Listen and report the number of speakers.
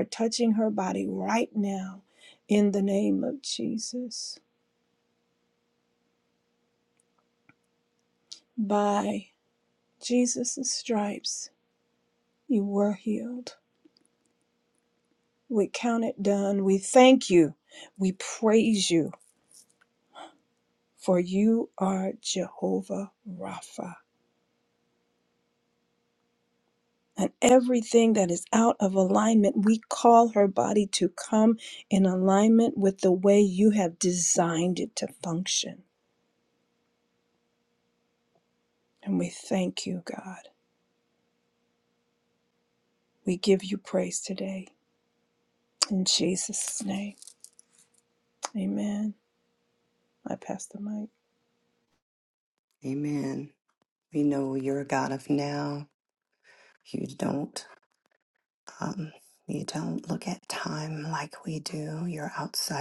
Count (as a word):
two